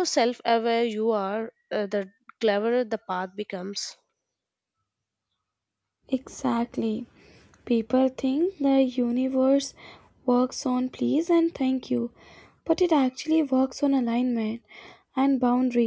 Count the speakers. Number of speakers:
two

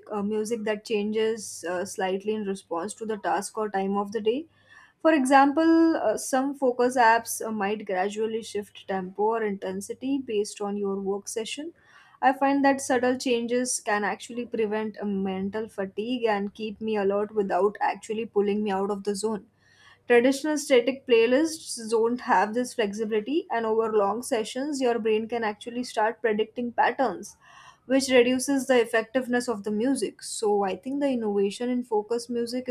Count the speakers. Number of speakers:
one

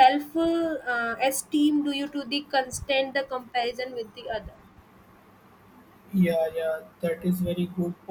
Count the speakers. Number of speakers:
two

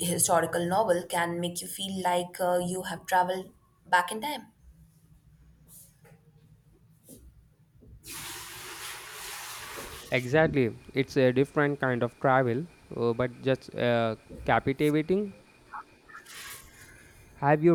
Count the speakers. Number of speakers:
two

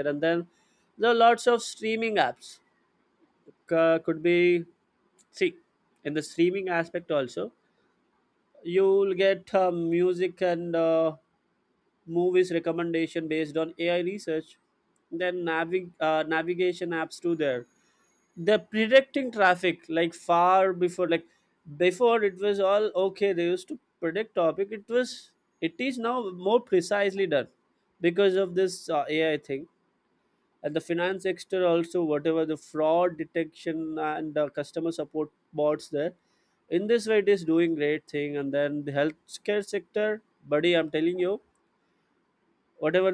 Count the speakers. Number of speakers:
one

